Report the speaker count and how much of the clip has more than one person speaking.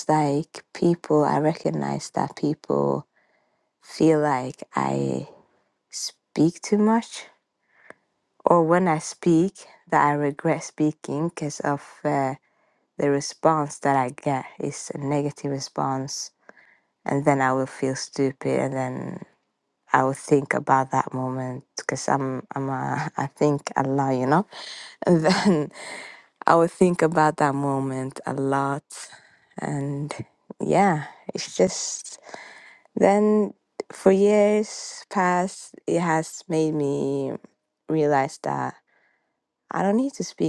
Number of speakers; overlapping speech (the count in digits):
1, no overlap